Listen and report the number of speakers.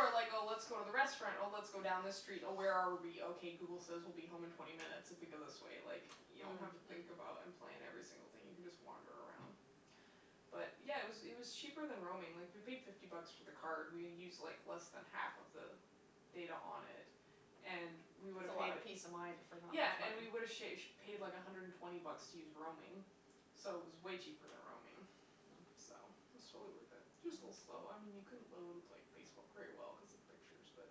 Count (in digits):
2